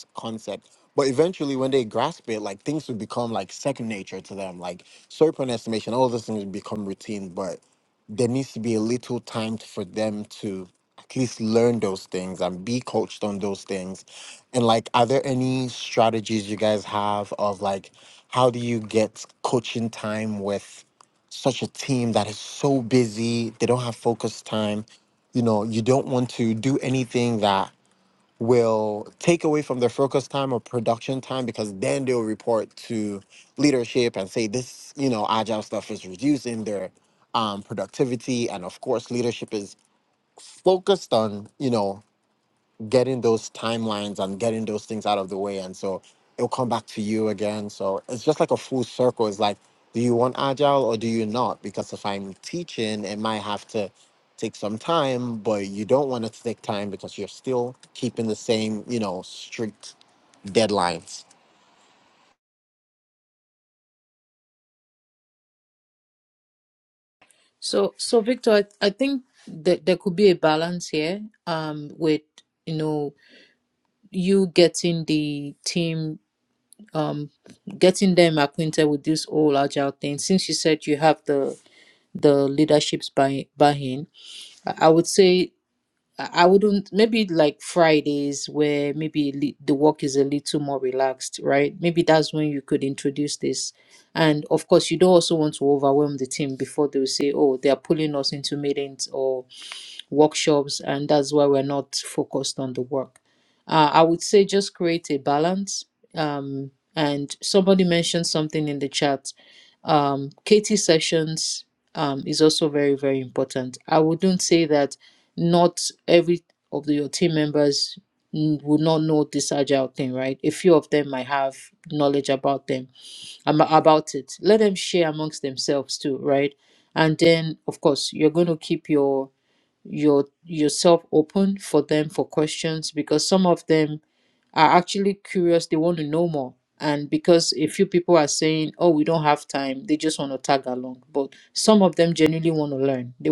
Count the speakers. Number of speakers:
2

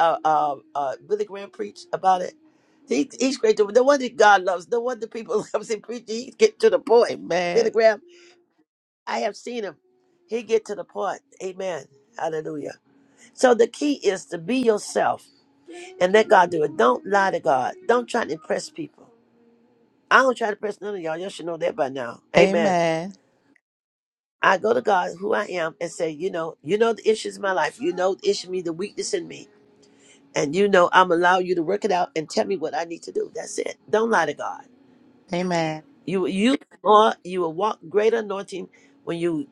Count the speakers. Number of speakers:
2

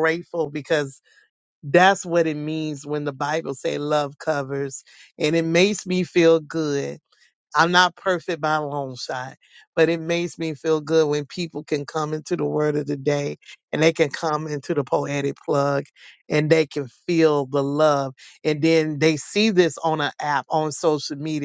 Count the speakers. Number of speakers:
1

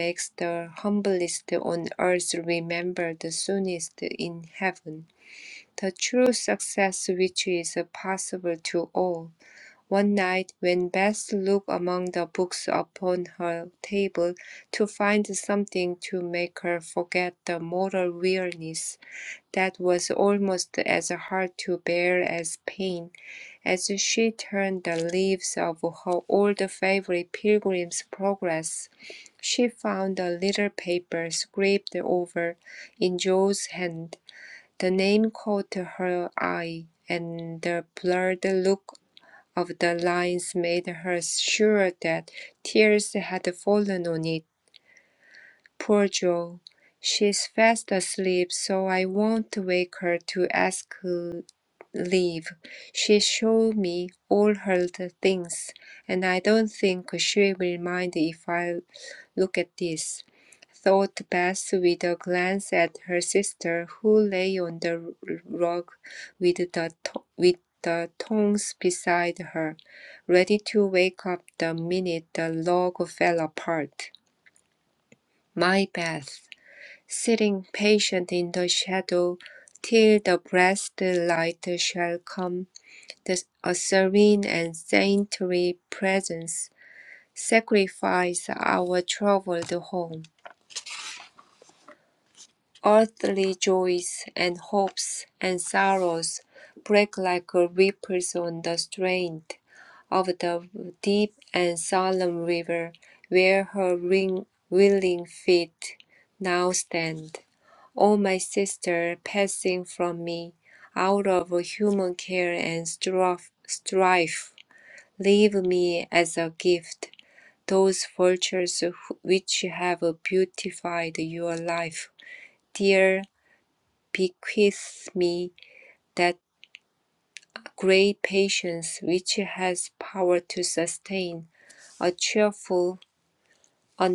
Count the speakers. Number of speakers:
1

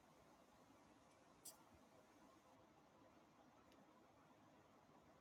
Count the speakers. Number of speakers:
0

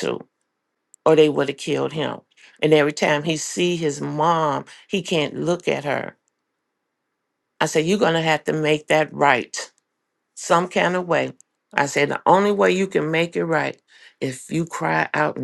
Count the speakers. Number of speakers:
1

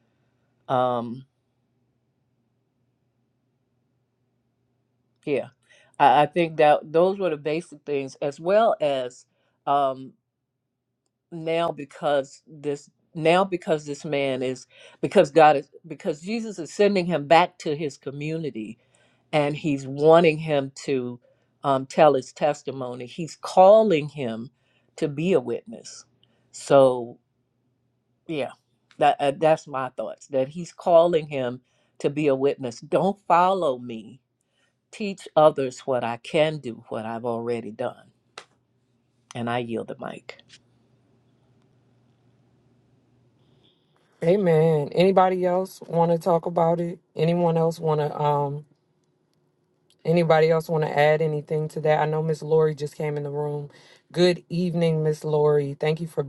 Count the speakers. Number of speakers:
2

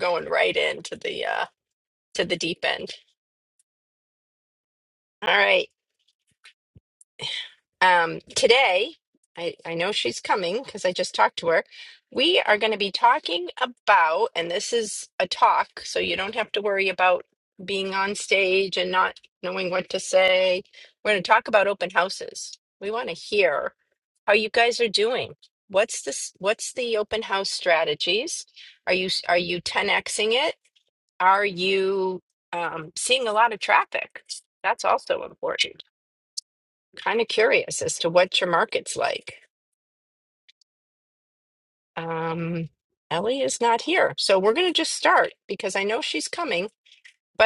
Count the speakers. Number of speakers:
1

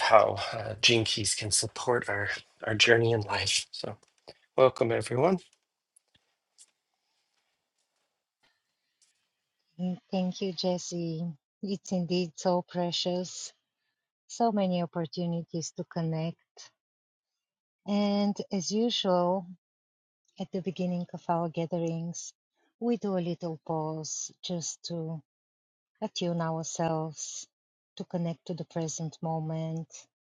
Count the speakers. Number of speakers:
2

